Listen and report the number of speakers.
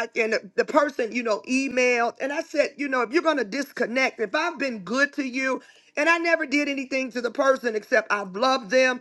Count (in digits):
1